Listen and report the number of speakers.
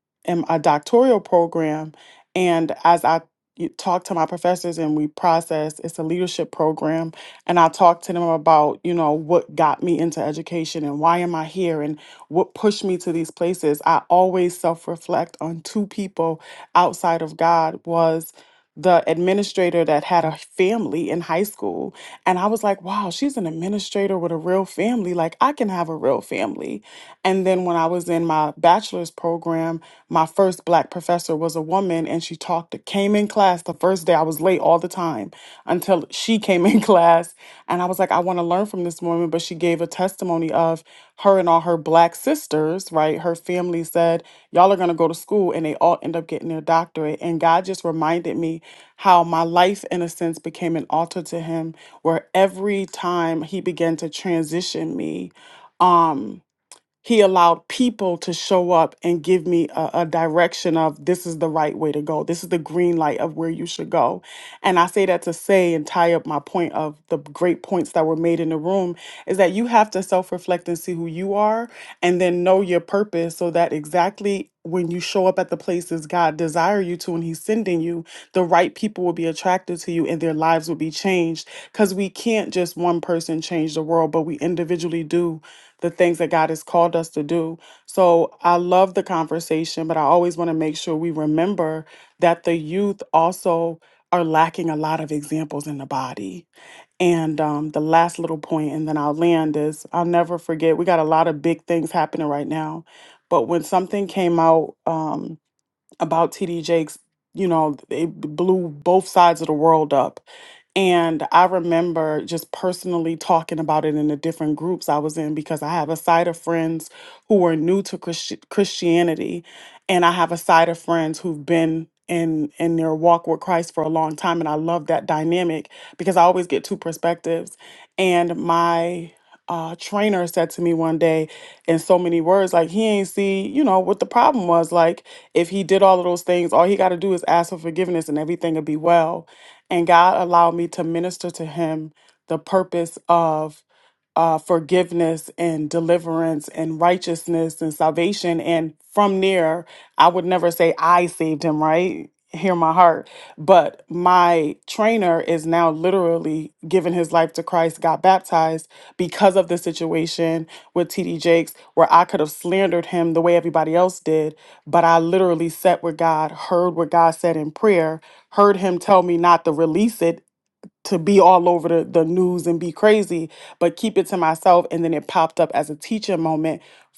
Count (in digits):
1